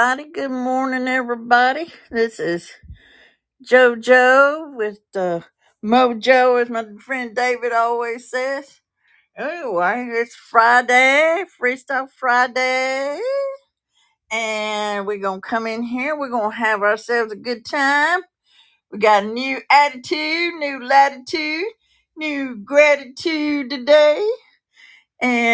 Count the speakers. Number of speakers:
one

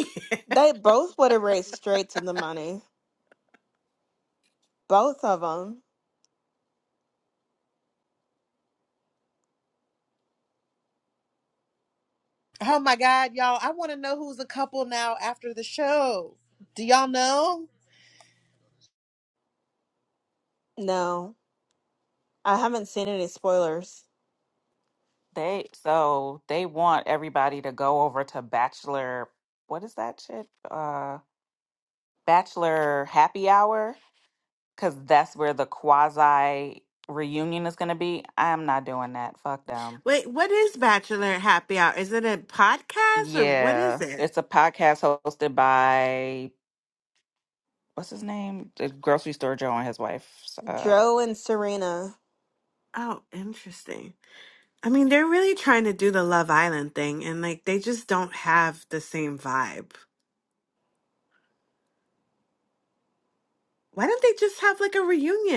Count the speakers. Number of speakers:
four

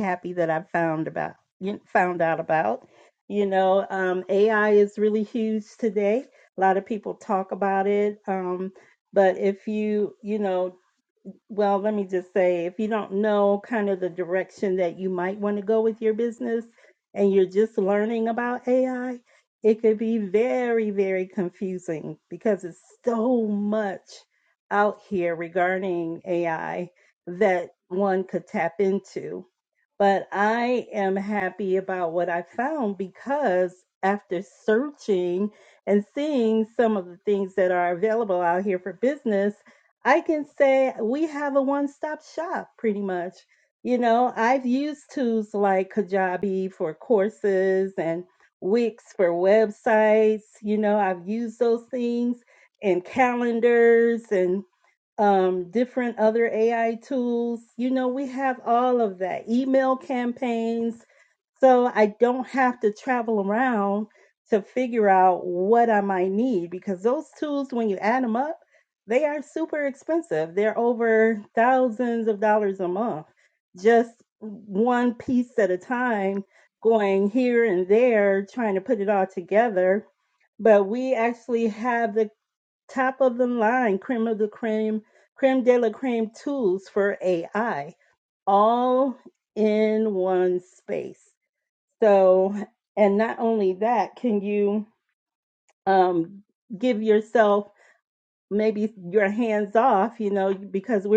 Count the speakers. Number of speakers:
one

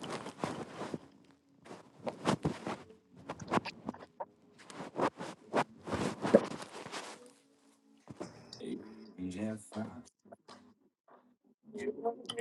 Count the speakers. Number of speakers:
zero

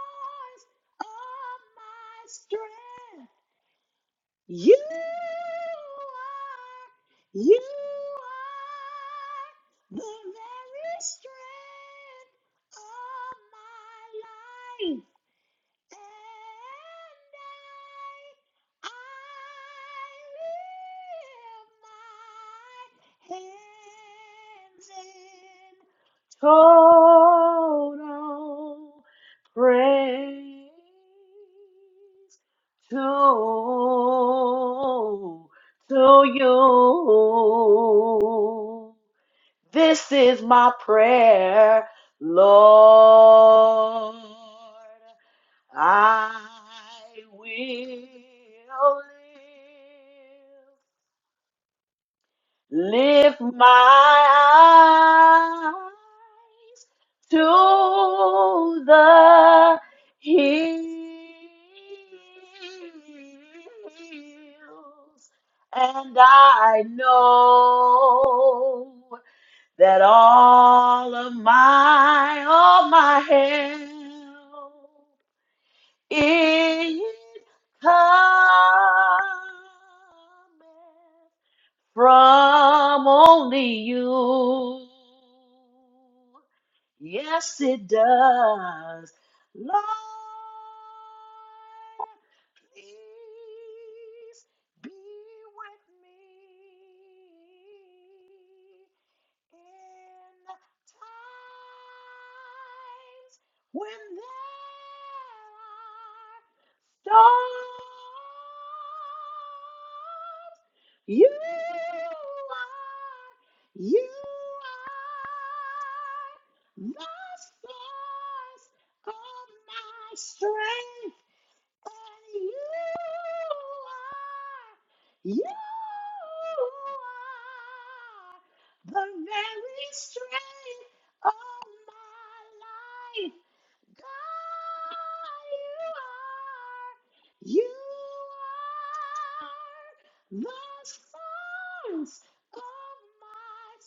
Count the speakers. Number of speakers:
one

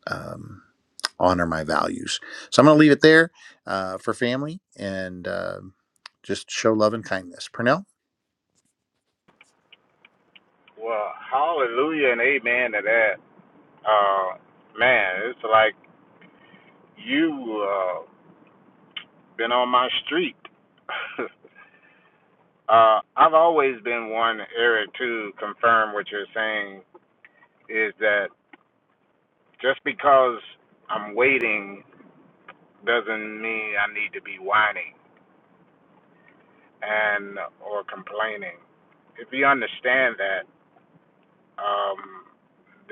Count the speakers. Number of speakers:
two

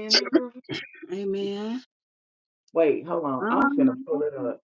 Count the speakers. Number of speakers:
two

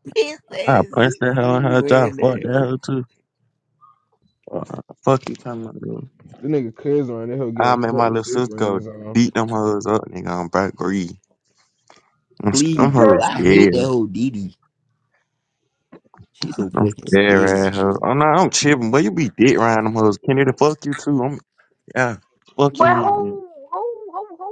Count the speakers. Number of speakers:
four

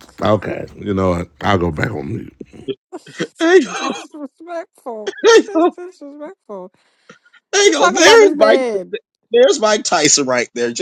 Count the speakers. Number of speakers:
three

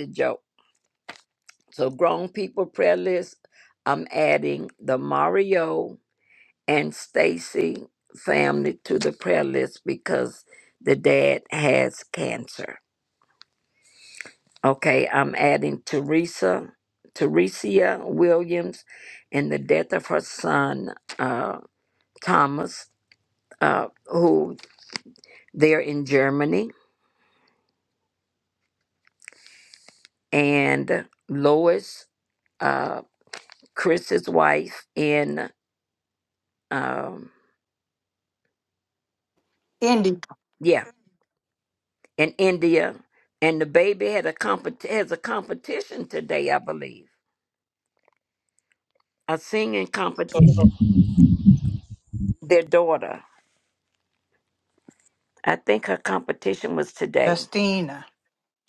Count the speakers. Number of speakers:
two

